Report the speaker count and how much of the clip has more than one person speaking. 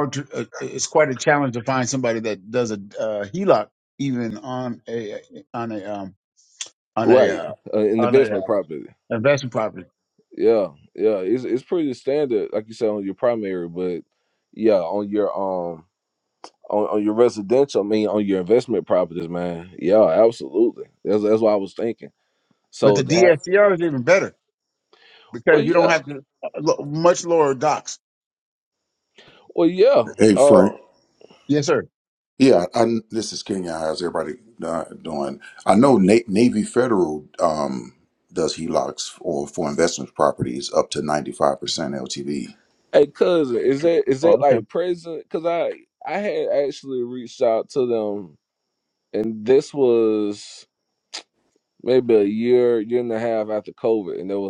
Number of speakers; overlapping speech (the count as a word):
three, about 5%